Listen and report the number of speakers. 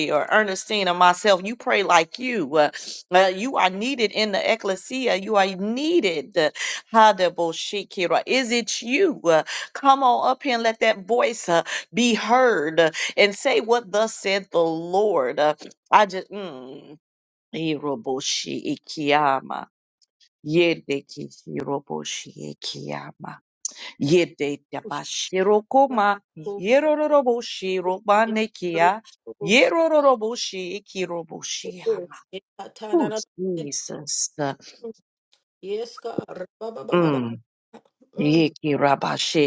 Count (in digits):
2